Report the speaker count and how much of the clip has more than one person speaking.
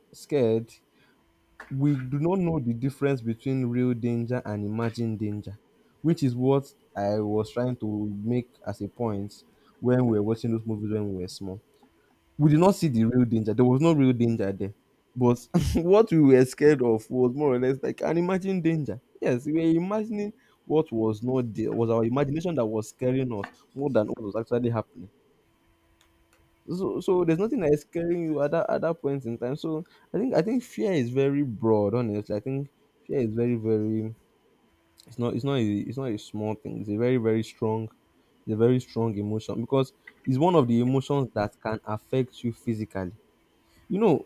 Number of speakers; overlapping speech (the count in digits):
1, no overlap